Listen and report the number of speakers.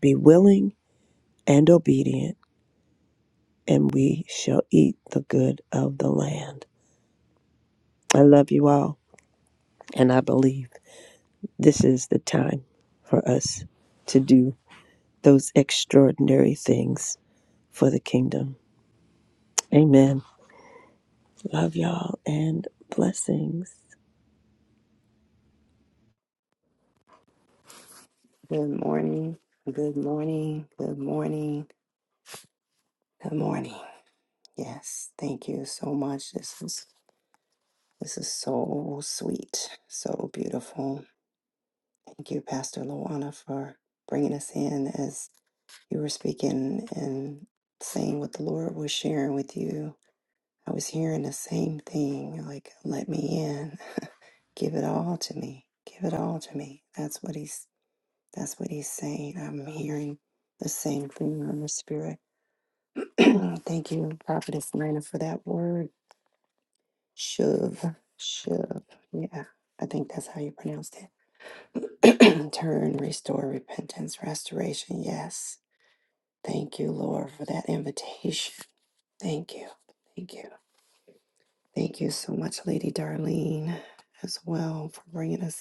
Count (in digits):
2